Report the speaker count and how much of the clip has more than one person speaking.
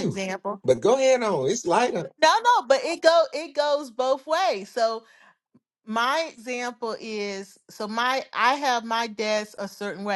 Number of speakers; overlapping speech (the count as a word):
two, about 2%